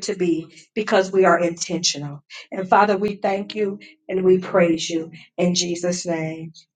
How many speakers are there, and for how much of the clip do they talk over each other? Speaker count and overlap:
one, no overlap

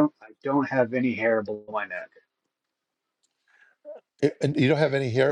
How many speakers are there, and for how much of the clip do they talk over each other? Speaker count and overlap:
two, about 2%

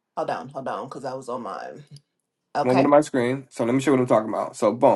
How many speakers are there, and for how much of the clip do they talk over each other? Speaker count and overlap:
two, about 5%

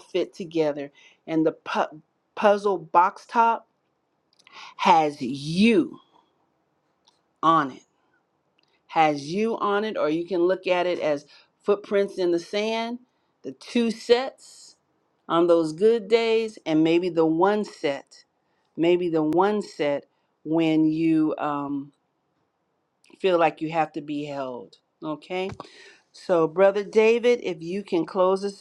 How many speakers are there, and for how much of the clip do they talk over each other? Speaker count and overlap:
one, no overlap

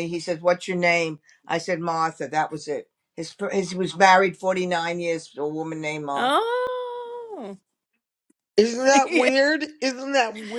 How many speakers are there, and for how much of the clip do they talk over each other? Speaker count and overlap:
three, about 7%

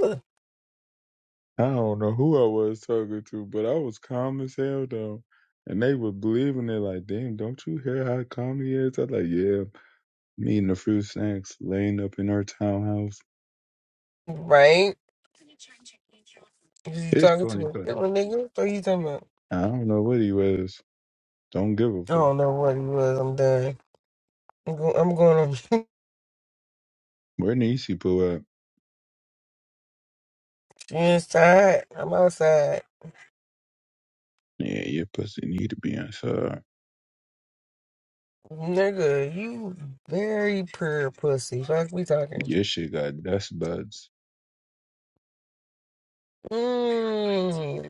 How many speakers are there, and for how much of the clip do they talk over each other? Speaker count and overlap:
two, about 2%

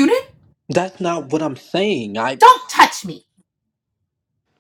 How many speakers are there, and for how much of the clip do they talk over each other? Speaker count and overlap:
two, under 1%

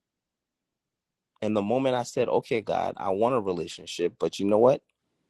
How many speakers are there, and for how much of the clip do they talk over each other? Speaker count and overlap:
one, no overlap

